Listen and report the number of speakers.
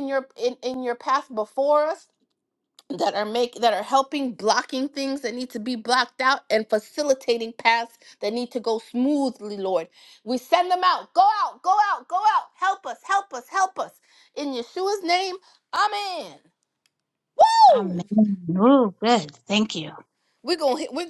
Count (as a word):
two